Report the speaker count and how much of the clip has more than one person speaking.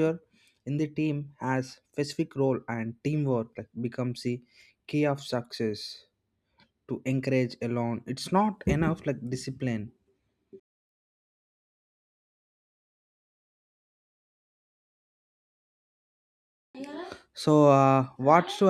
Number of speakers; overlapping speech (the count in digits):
1, no overlap